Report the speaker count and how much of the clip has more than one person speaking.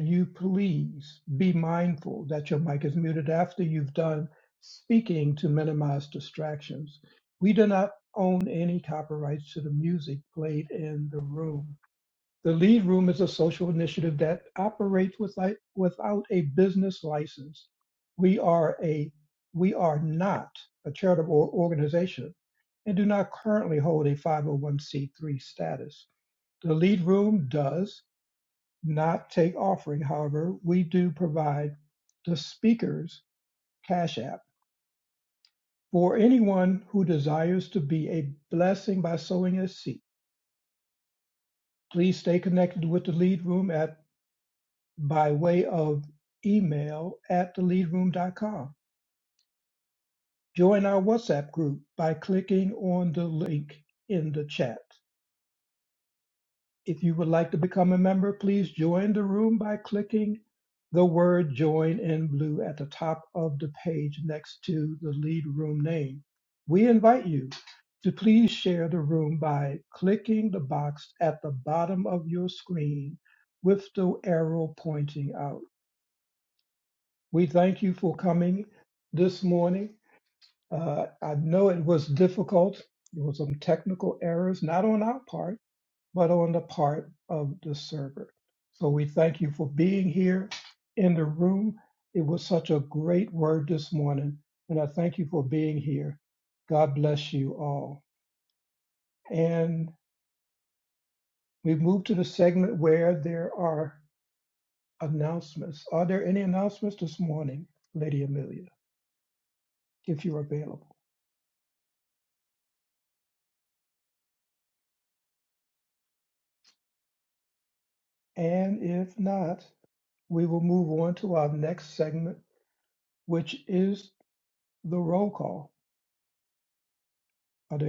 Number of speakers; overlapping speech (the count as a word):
one, no overlap